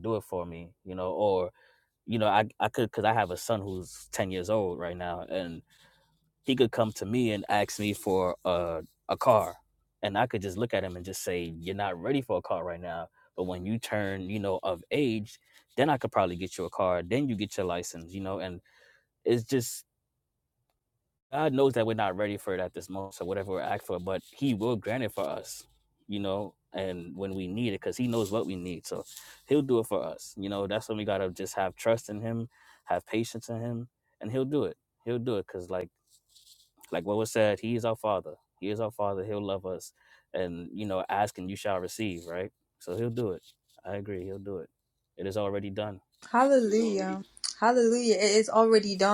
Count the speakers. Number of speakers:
2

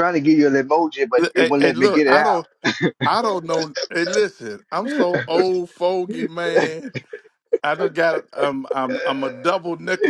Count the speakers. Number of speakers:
2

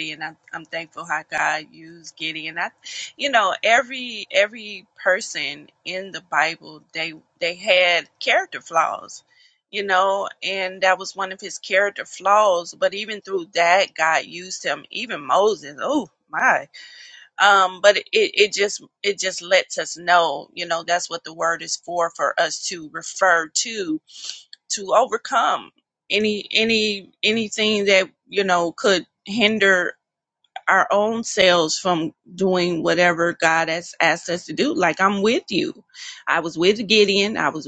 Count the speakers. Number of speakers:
1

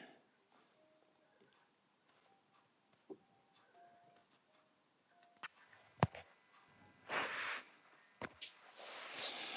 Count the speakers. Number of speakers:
0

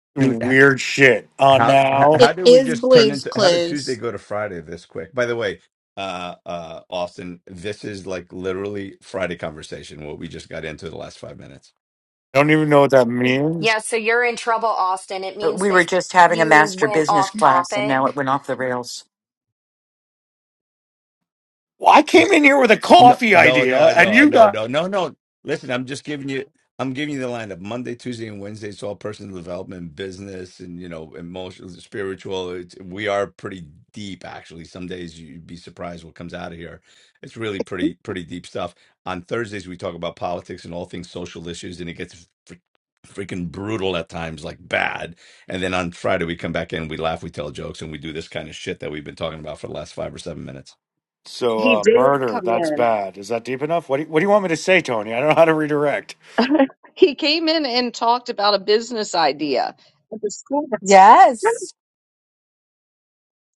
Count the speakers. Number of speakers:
6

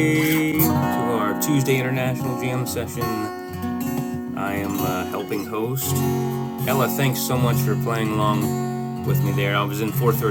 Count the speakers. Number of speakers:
1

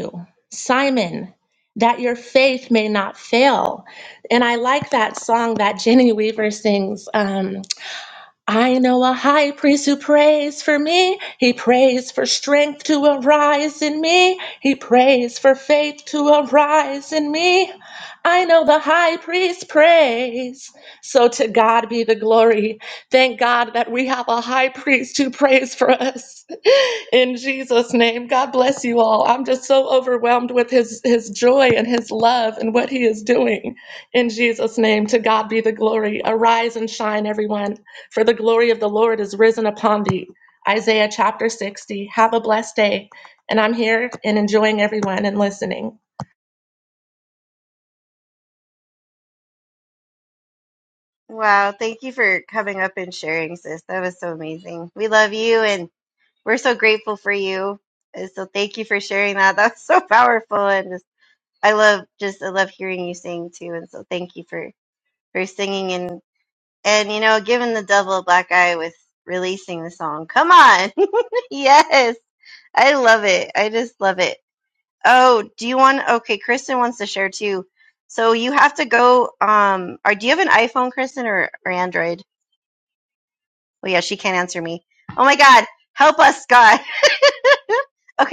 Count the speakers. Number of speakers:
2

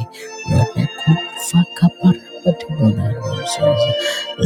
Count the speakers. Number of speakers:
1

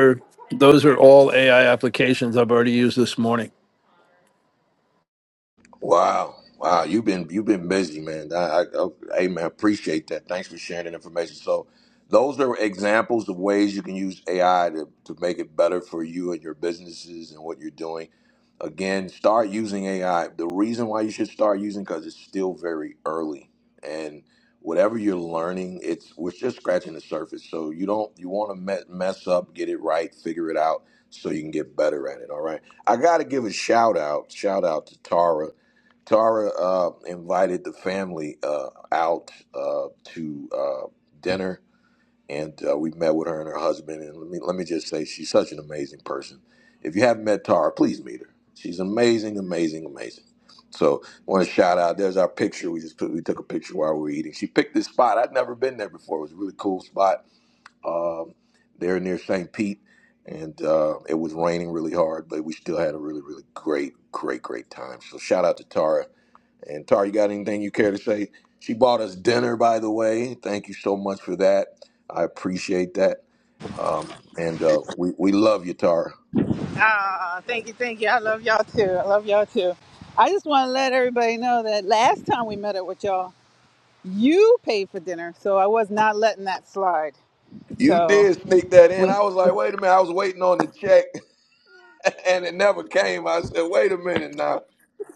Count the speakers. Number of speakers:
3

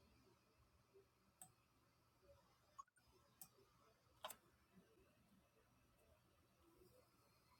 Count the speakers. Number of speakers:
0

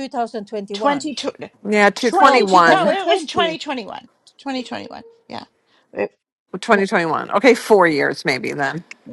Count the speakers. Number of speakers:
3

